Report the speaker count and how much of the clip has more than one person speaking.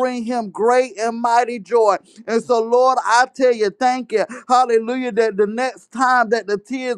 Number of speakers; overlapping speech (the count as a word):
one, no overlap